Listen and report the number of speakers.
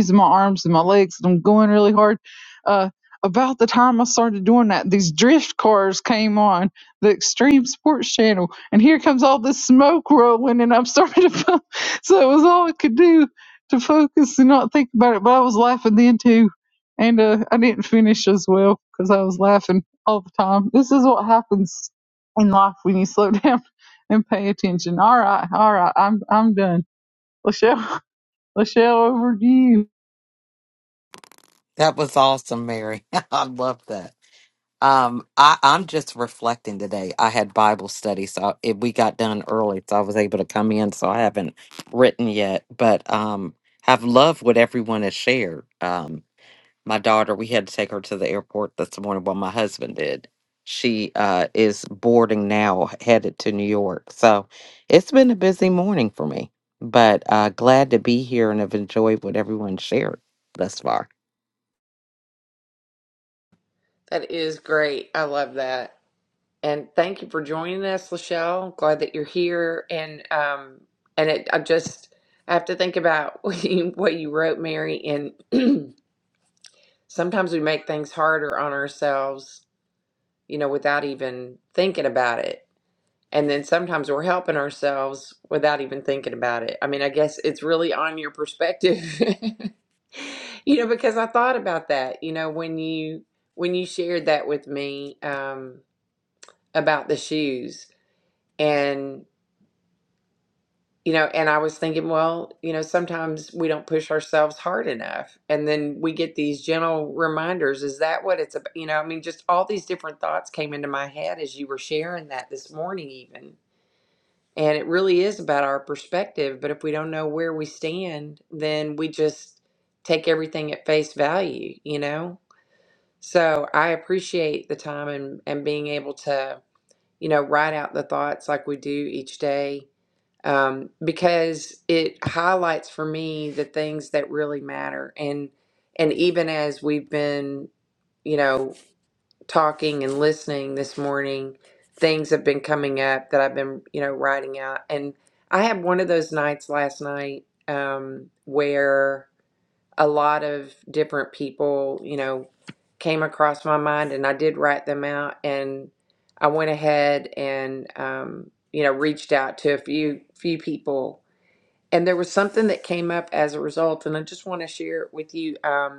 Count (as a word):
three